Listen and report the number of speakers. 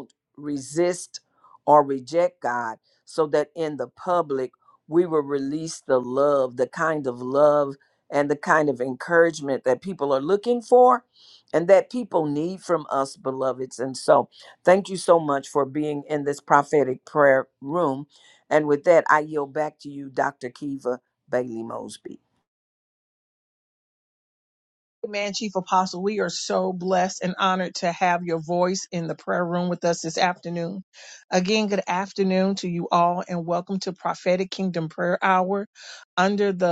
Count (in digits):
2